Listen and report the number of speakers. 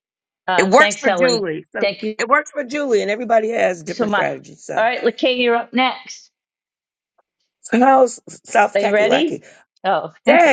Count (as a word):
two